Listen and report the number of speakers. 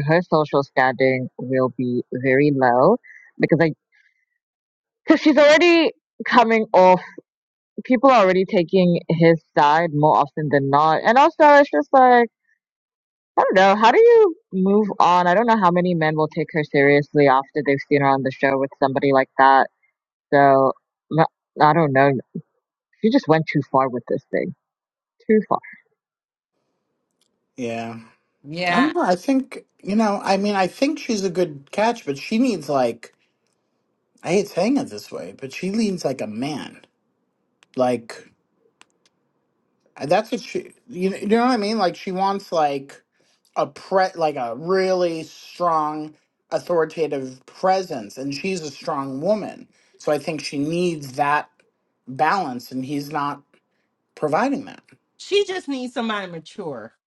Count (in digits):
3